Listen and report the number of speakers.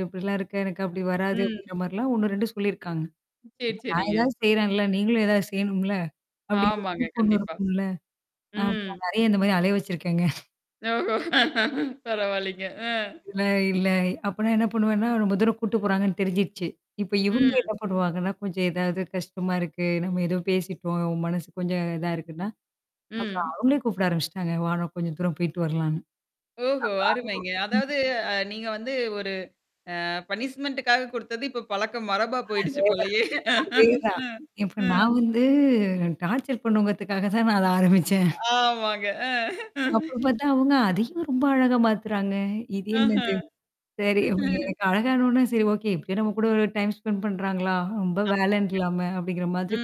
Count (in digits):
2